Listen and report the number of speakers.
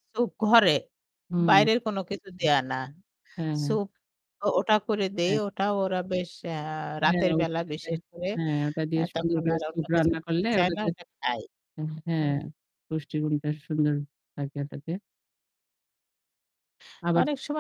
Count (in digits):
2